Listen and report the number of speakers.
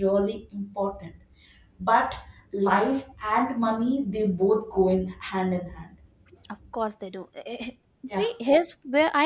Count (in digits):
2